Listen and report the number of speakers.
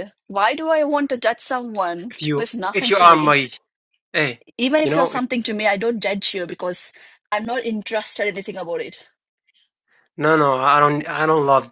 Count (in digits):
2